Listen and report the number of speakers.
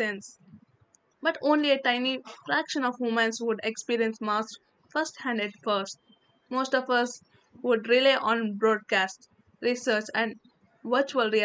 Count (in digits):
1